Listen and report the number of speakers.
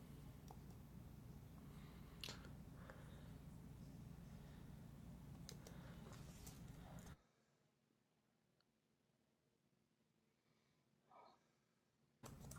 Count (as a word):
zero